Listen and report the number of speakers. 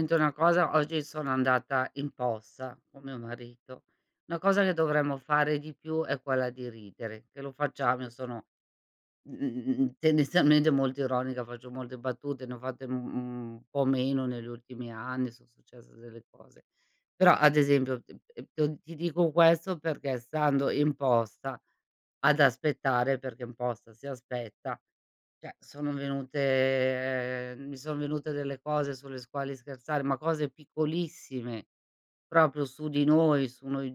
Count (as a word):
one